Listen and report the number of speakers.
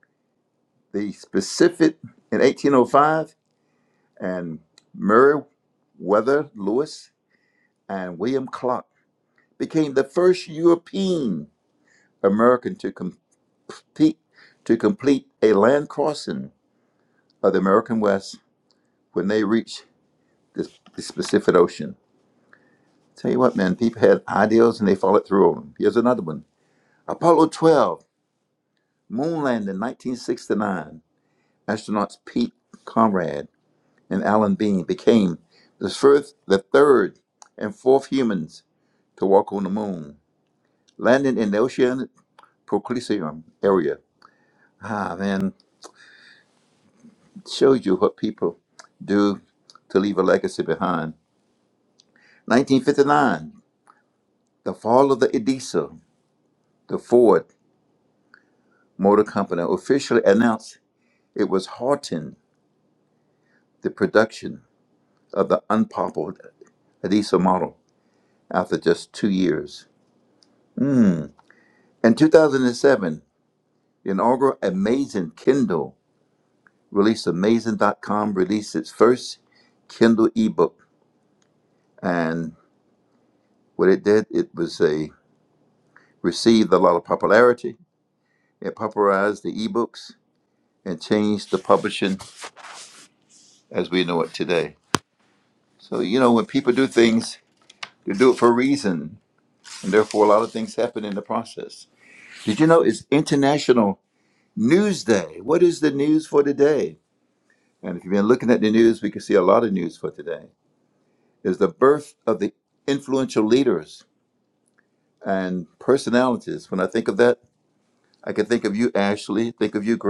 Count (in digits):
1